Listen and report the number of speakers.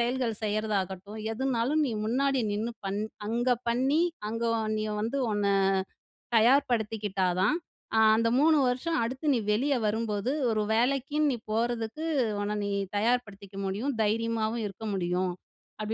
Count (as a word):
one